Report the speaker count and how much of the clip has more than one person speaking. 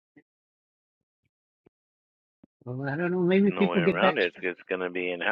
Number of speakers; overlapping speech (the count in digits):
2, about 15%